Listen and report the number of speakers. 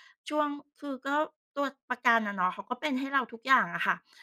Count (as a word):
one